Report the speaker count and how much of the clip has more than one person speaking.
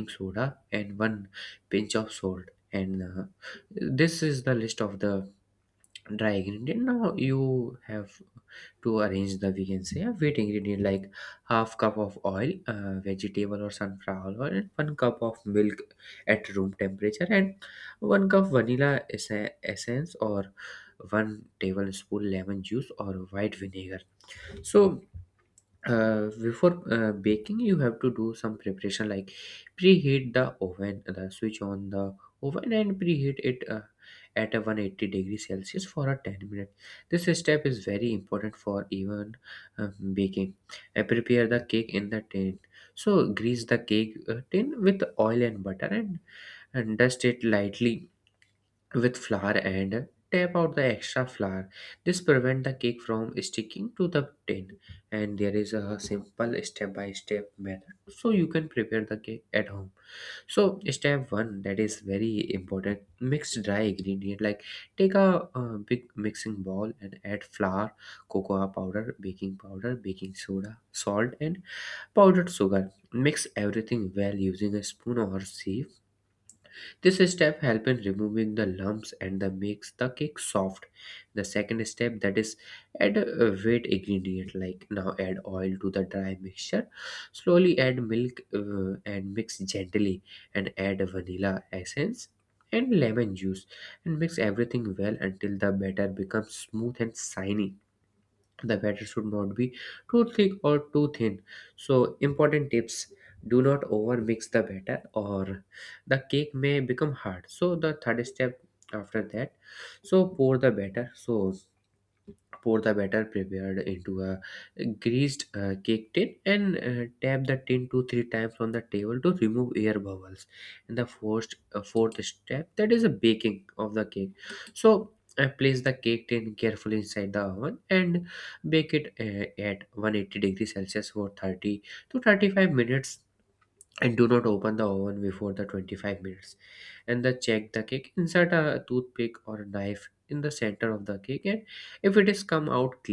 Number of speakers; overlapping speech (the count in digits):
1, no overlap